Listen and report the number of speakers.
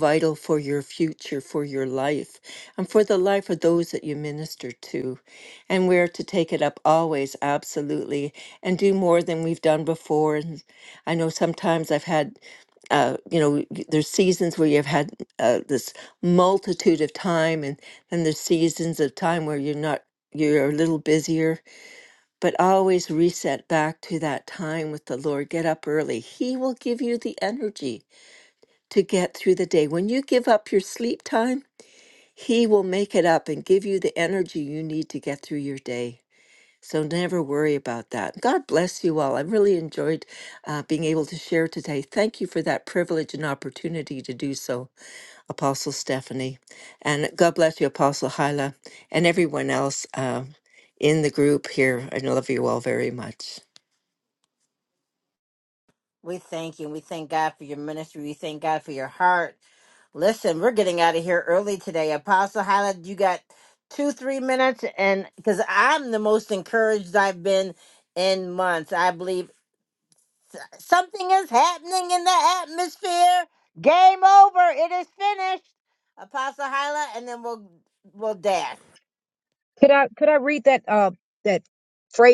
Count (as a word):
three